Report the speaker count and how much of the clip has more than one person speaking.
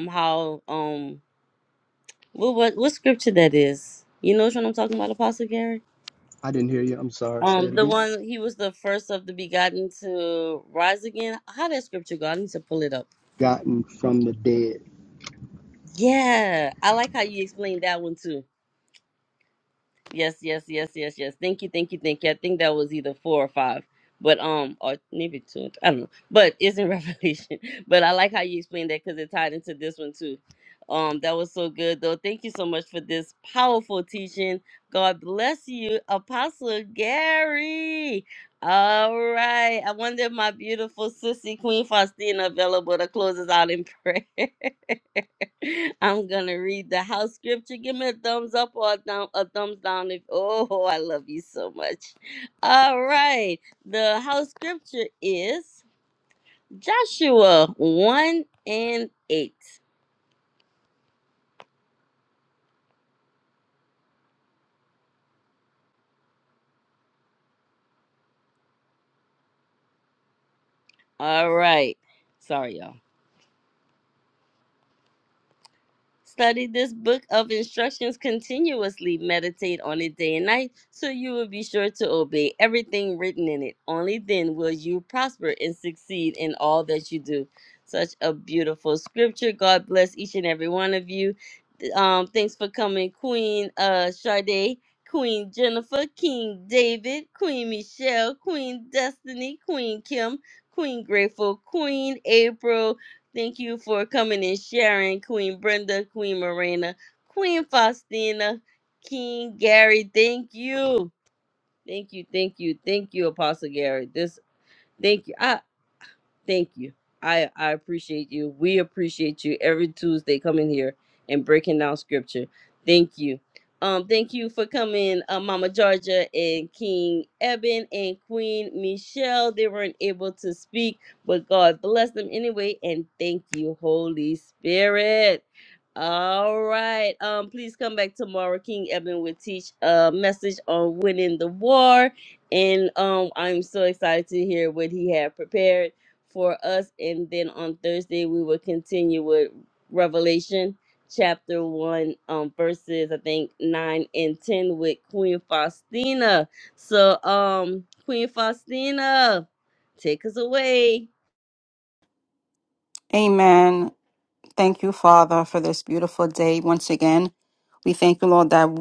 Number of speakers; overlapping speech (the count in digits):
3, under 1%